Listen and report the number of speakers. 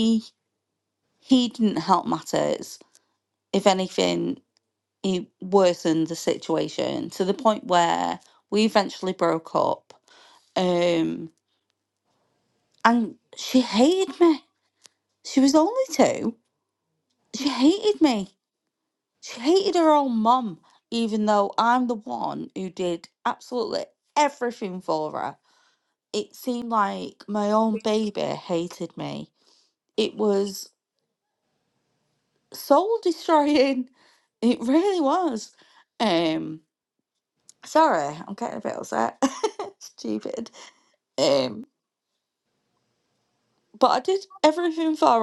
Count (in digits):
1